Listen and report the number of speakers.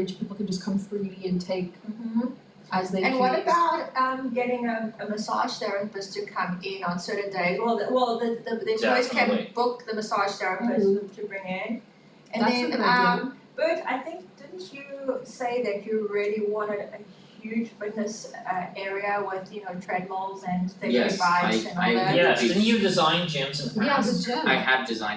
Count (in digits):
4